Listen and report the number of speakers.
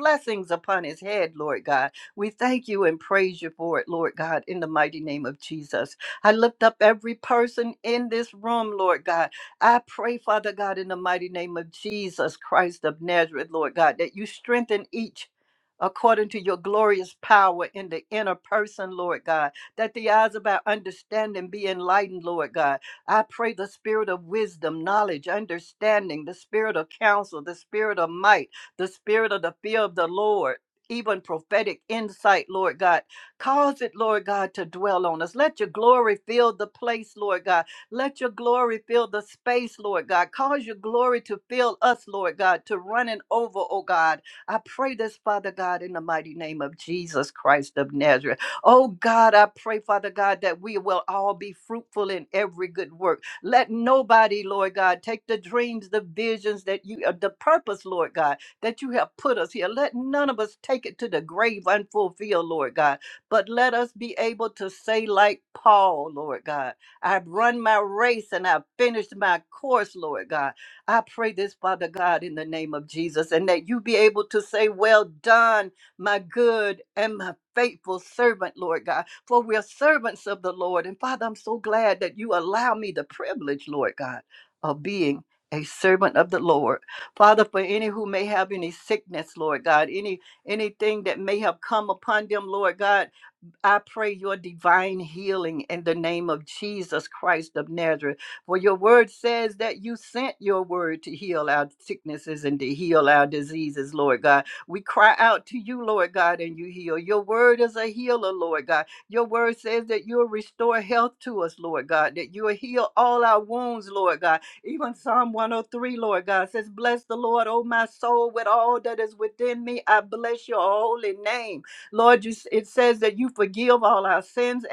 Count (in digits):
1